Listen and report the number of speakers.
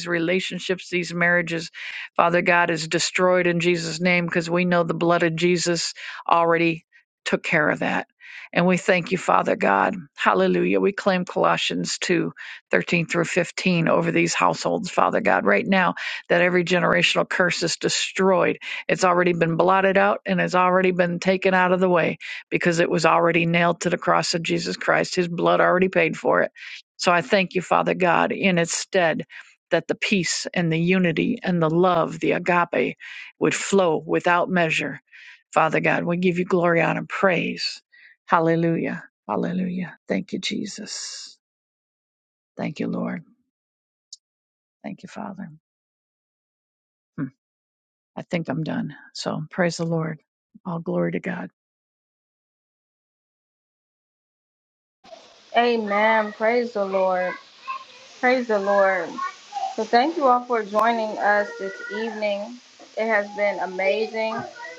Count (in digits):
2